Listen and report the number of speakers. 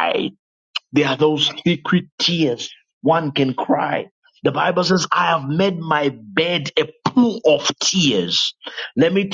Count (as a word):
one